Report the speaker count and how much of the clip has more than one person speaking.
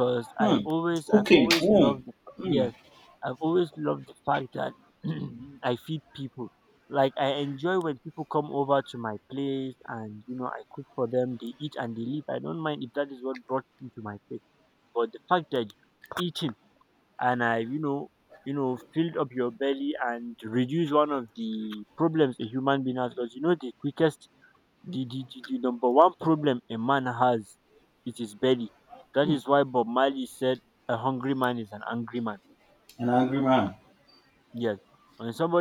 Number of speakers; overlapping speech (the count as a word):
two, about 4%